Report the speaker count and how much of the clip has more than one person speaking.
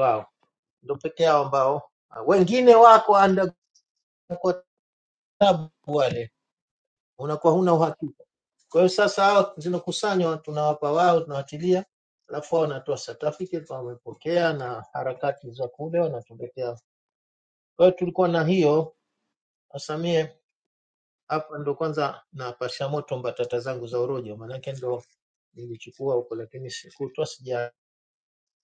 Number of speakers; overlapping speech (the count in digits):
1, no overlap